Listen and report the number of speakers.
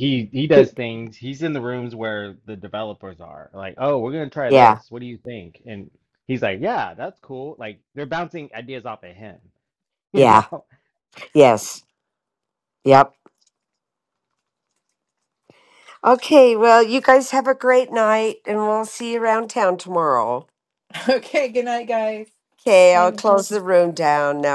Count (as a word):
three